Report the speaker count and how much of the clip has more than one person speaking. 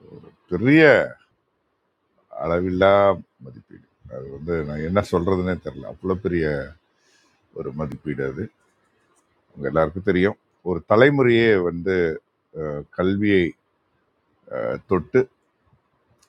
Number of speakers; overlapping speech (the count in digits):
1, no overlap